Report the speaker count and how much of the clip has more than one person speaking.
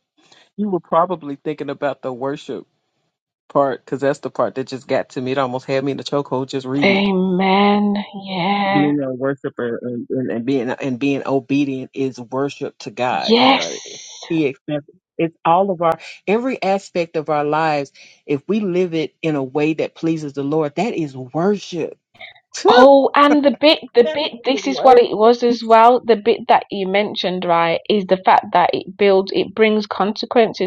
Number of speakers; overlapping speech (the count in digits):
2, about 8%